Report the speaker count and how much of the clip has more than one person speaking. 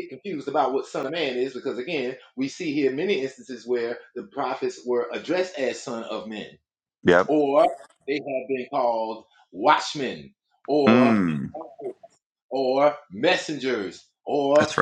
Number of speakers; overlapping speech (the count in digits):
2, about 4%